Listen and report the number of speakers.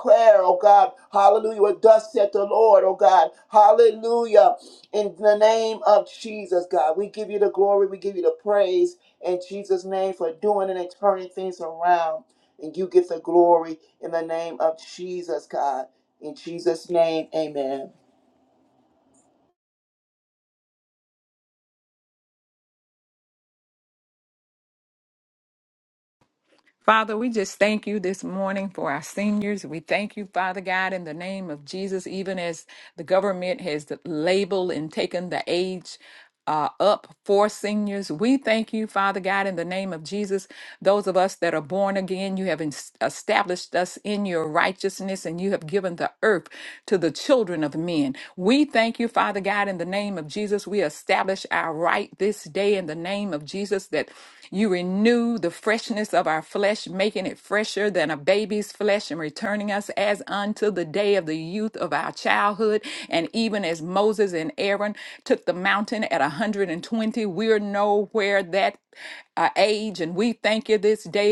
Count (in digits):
2